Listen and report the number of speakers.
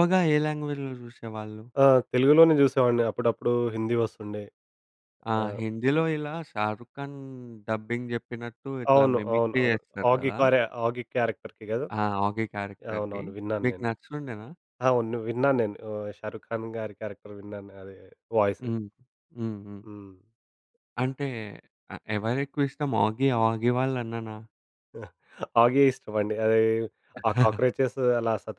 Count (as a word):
two